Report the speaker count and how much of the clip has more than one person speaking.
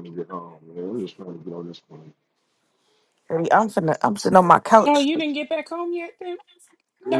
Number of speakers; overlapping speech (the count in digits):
3, about 5%